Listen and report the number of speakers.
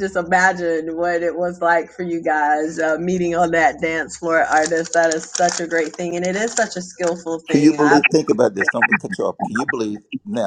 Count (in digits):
2